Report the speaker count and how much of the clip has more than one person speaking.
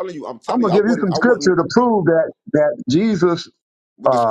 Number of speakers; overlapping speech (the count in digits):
2, about 31%